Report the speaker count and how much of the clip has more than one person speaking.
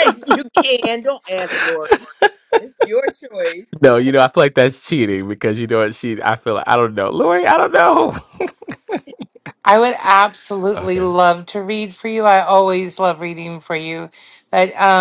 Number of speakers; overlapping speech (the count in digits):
3, about 2%